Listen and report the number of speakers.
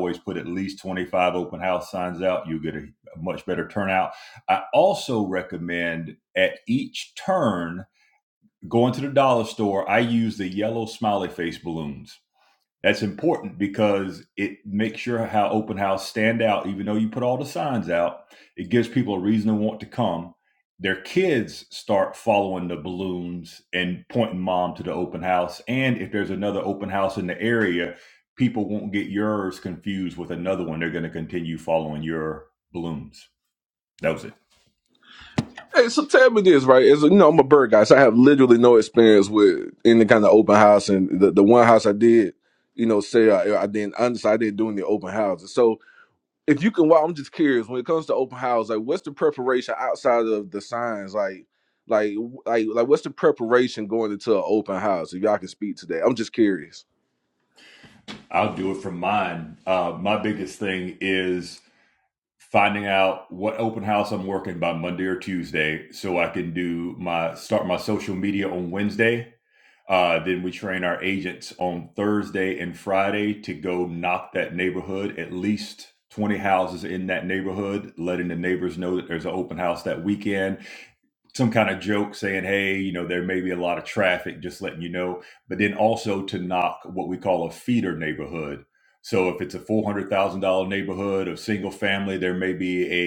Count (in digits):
2